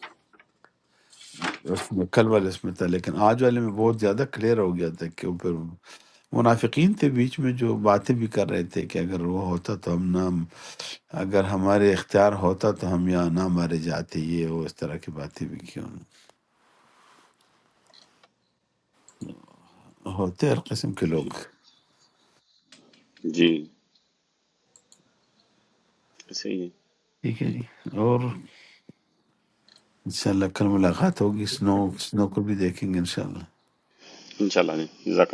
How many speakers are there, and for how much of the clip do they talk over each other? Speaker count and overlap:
2, under 1%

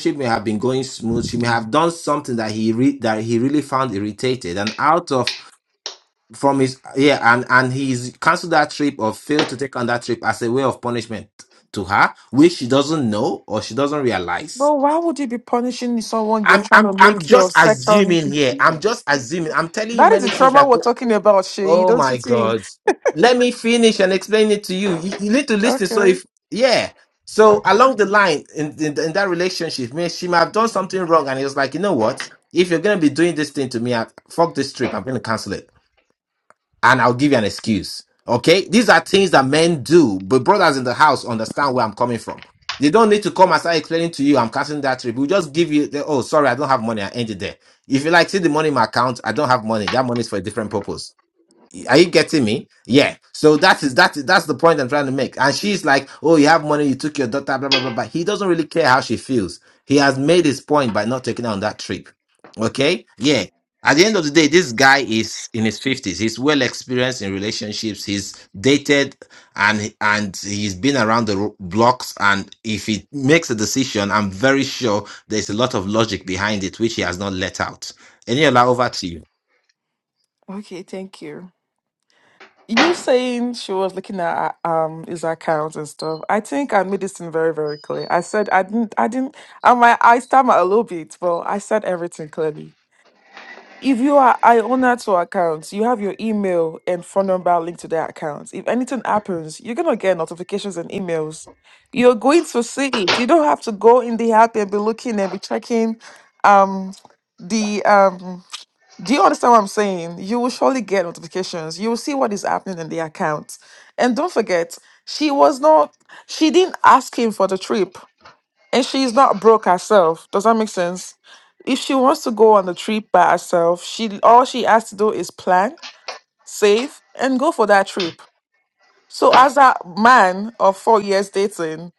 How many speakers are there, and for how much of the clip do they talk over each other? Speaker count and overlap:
2, about 4%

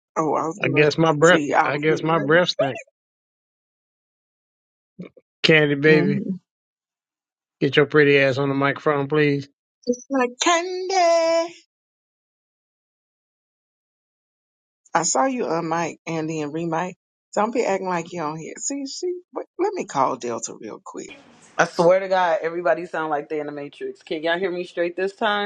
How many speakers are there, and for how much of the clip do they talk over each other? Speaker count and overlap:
3, about 7%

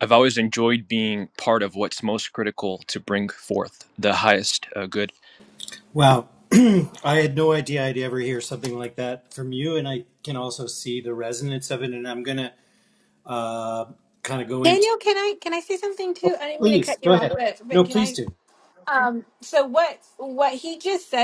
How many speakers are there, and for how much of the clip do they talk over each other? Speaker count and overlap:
3, about 8%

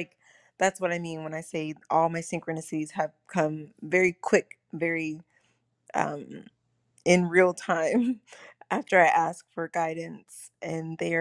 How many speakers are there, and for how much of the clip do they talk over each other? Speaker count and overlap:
1, no overlap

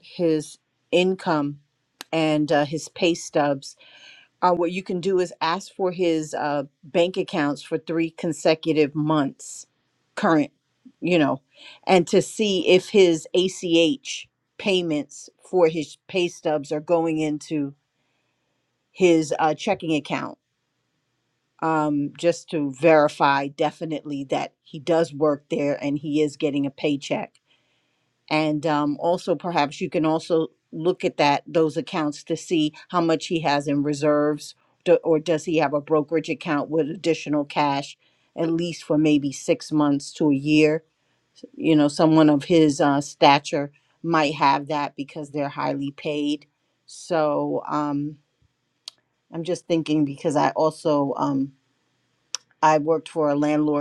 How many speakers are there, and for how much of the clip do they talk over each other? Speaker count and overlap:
1, no overlap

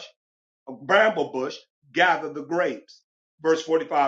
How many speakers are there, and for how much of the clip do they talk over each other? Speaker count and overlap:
1, no overlap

